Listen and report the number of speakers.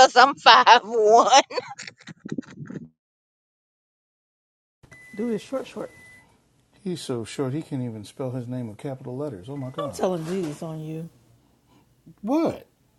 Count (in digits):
3